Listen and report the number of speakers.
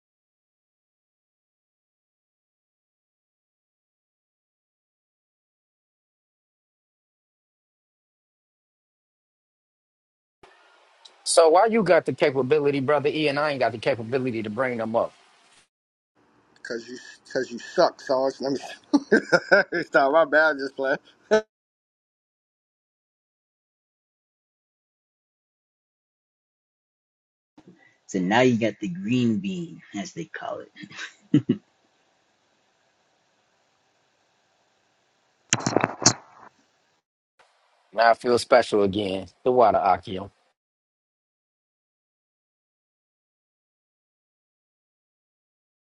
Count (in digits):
3